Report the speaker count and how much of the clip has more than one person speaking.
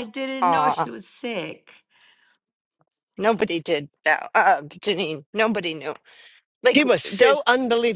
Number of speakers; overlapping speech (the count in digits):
3, about 14%